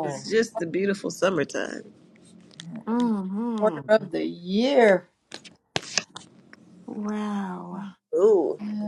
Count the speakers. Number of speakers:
3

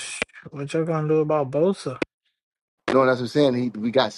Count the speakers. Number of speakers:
2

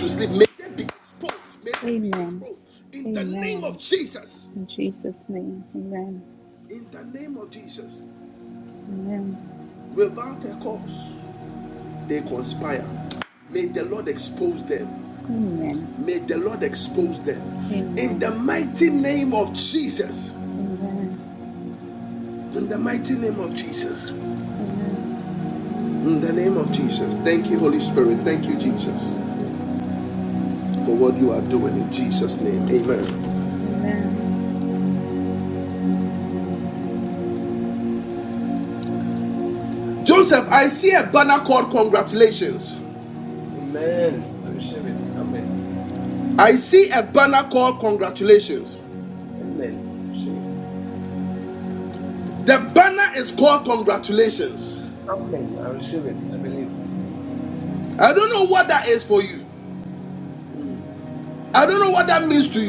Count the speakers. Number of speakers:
3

